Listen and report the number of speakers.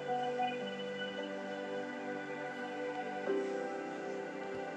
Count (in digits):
0